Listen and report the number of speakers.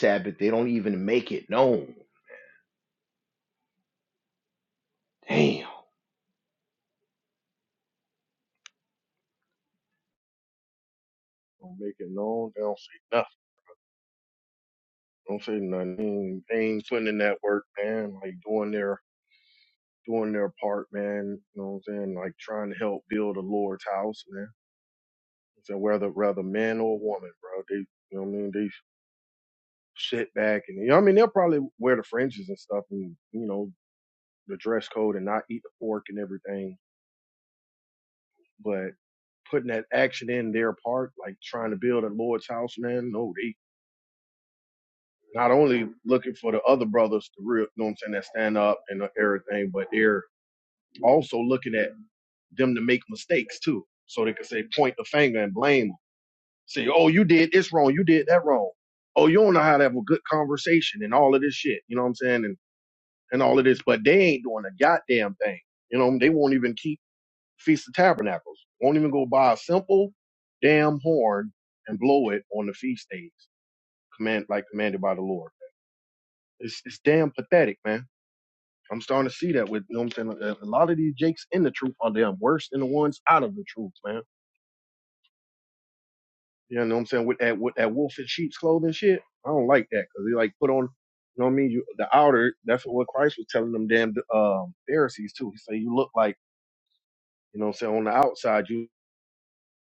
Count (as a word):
two